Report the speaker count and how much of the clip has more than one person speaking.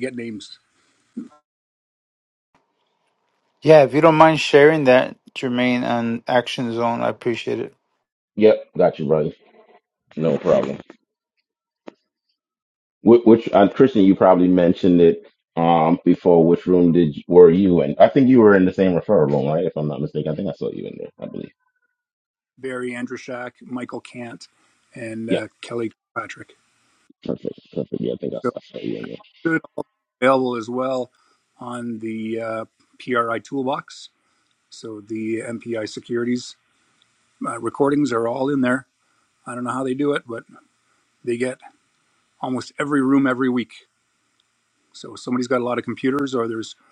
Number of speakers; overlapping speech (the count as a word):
three, under 1%